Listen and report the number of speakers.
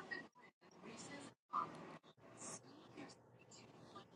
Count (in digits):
0